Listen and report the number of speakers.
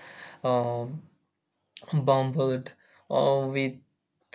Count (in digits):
1